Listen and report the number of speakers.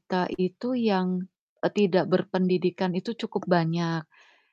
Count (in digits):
1